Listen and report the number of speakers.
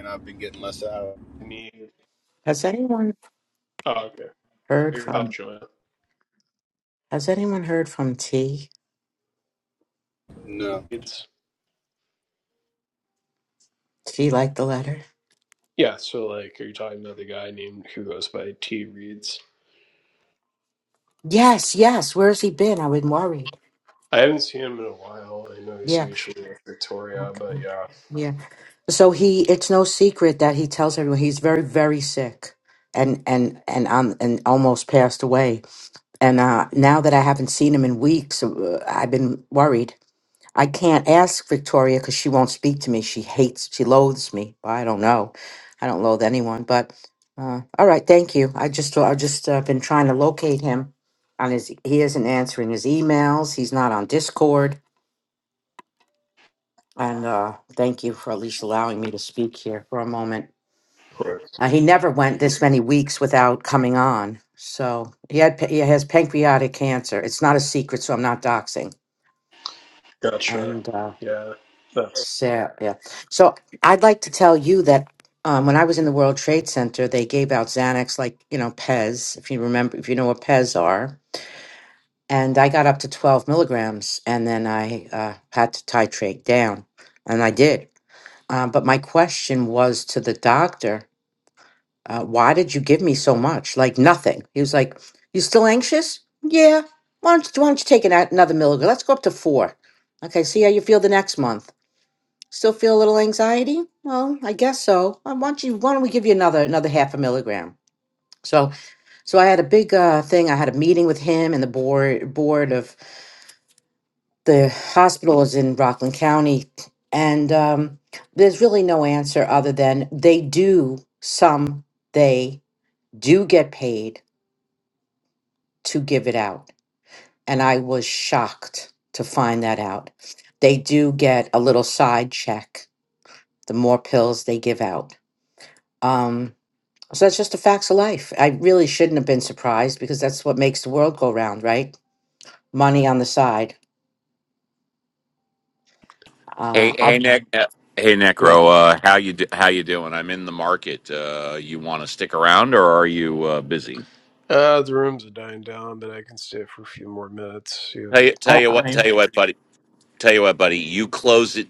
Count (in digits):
4